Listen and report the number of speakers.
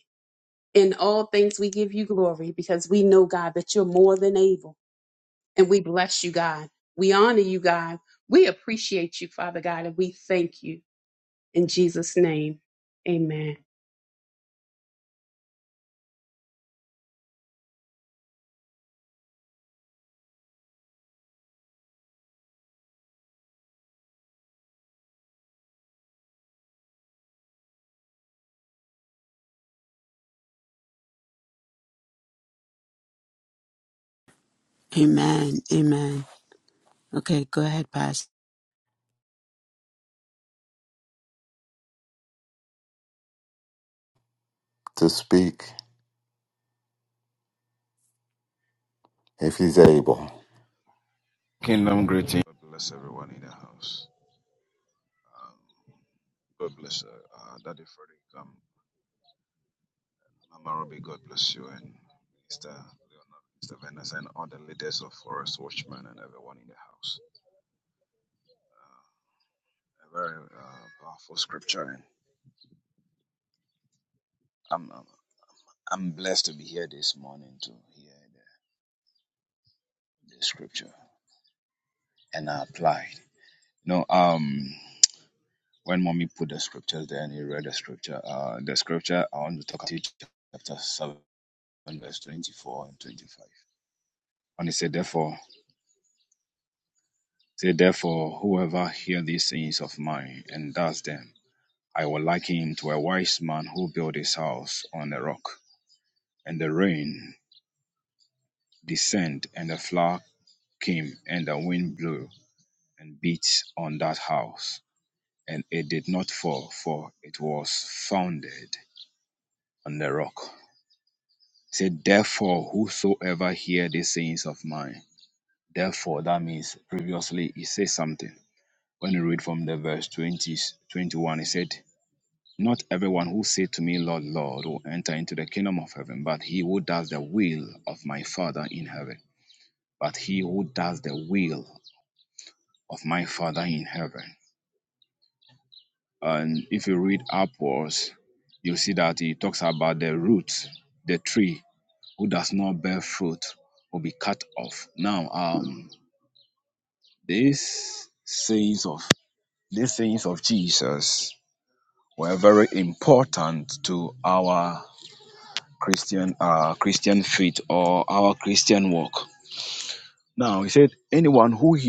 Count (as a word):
four